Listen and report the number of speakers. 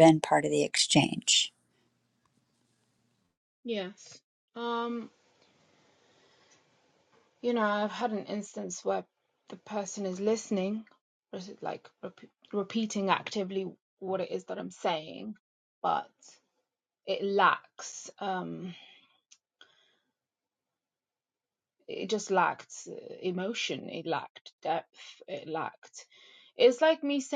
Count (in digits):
2